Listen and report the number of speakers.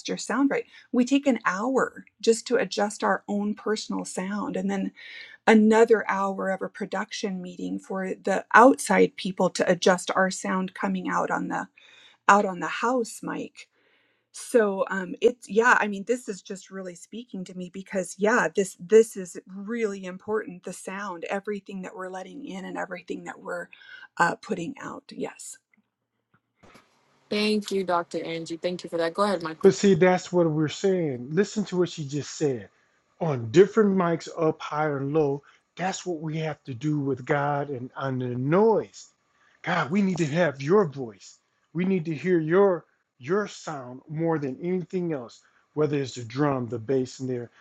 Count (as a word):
three